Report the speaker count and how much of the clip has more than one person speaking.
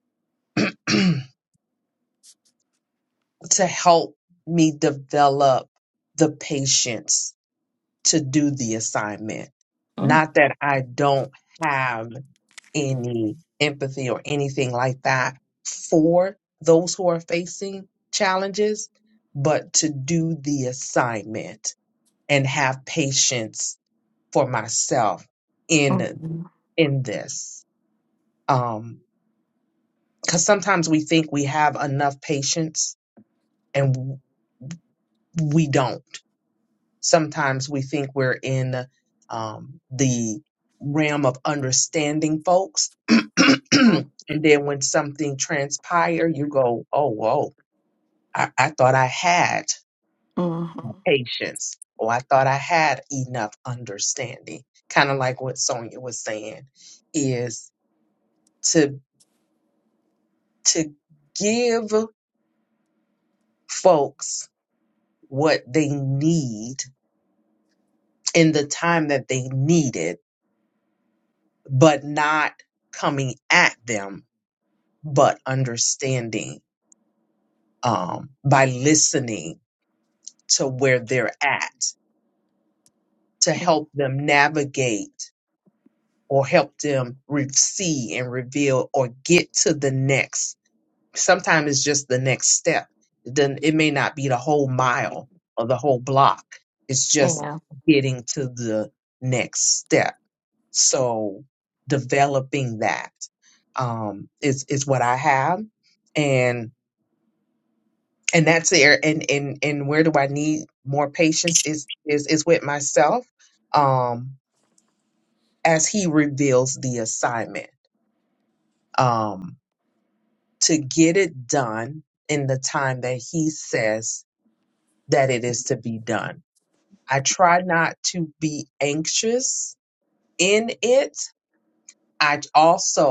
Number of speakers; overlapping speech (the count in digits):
2, under 1%